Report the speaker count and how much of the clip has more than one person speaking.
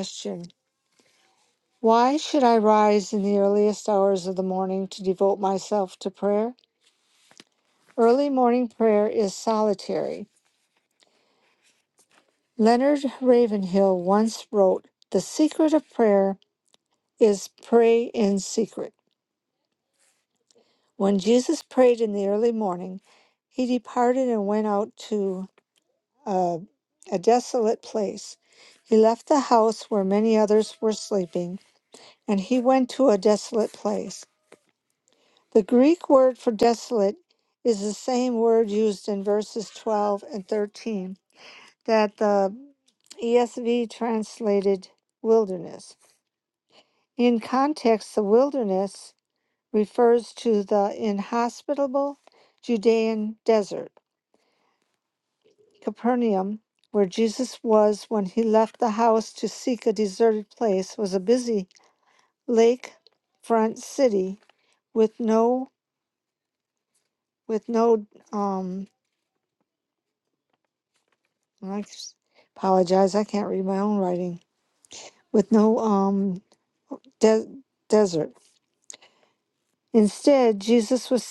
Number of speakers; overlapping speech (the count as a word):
one, no overlap